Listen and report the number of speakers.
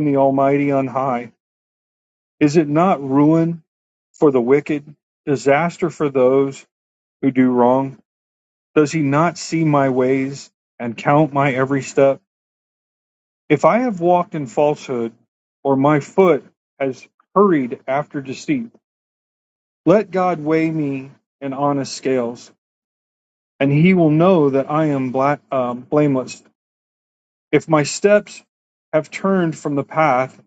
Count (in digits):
1